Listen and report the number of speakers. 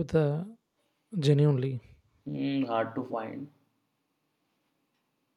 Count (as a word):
two